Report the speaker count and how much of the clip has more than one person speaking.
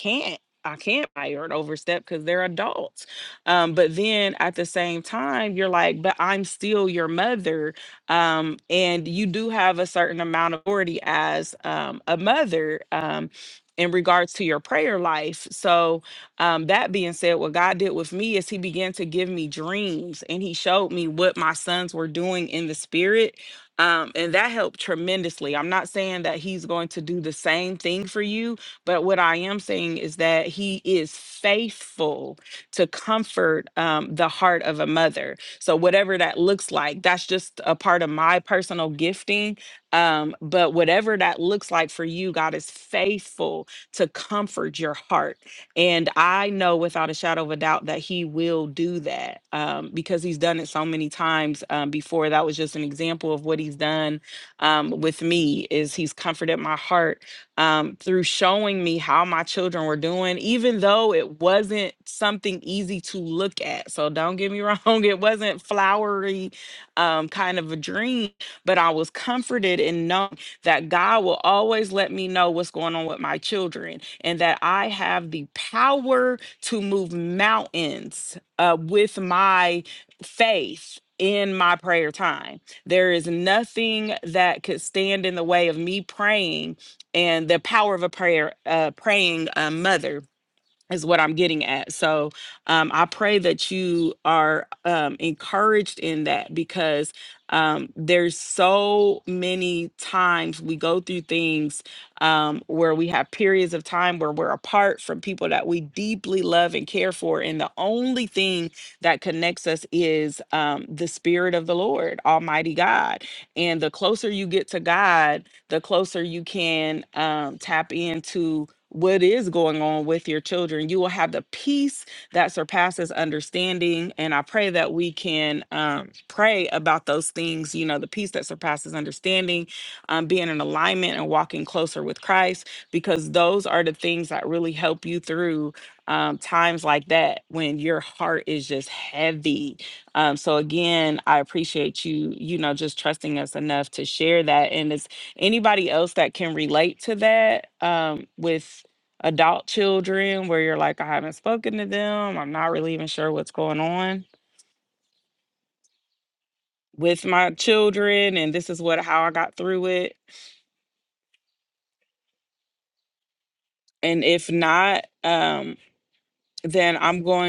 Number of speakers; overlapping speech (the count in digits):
1, no overlap